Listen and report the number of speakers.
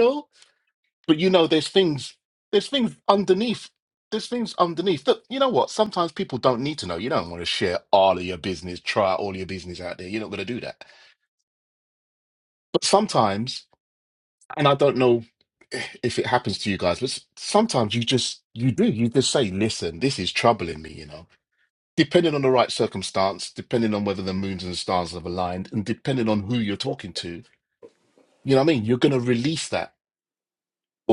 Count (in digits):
1